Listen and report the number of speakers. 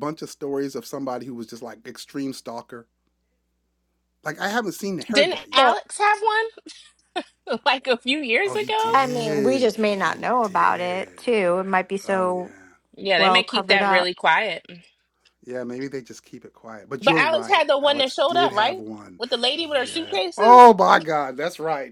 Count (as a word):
three